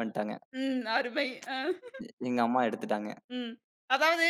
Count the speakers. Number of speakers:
2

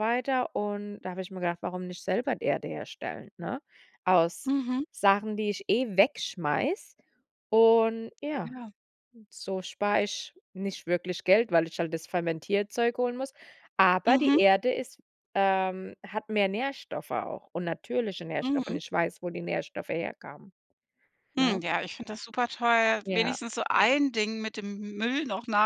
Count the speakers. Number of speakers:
2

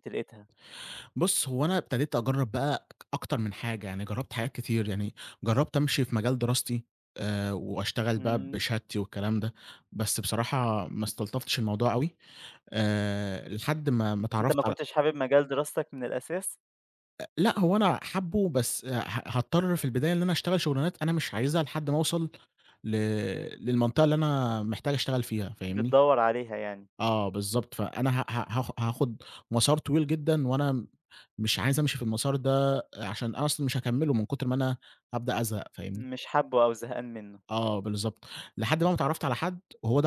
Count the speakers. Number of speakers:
2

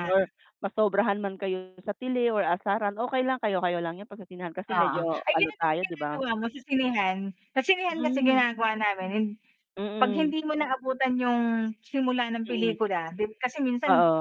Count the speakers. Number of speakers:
2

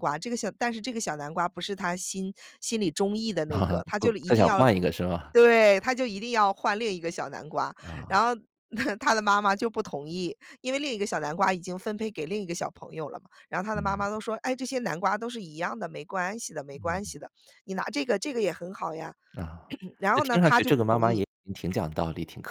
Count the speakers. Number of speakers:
2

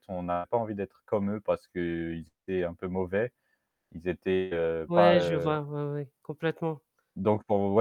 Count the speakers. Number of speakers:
2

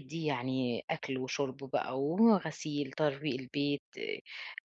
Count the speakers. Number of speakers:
1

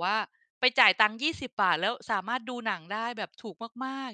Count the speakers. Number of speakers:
1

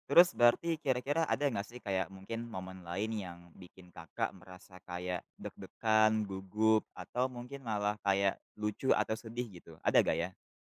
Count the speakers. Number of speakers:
1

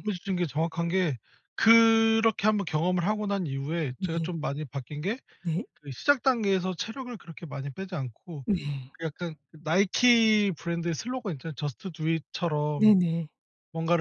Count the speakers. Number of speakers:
2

